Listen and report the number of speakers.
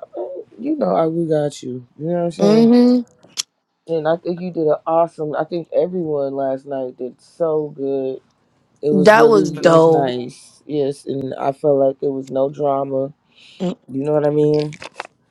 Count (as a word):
two